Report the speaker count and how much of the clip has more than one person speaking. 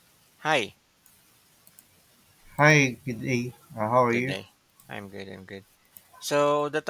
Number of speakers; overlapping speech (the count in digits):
2, about 4%